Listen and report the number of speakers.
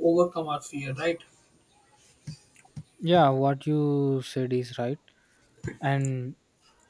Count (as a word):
two